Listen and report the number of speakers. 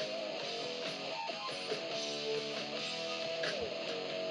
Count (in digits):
0